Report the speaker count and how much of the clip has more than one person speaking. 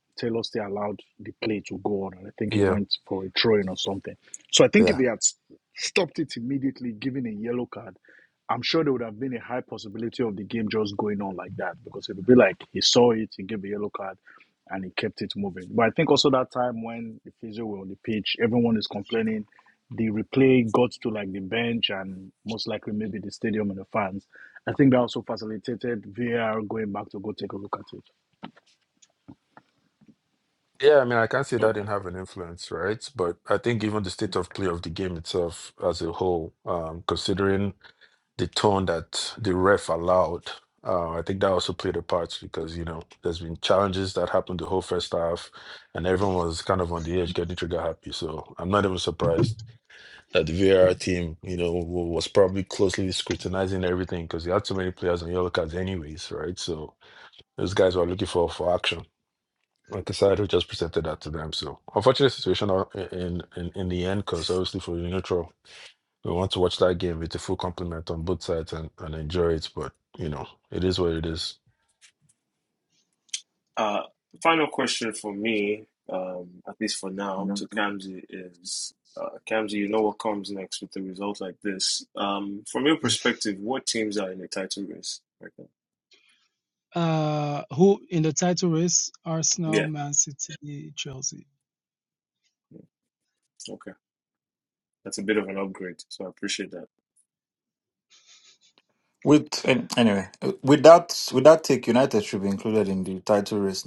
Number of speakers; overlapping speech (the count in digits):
5, about 1%